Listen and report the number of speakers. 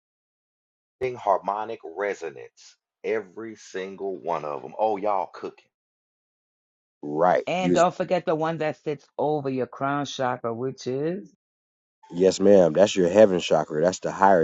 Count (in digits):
3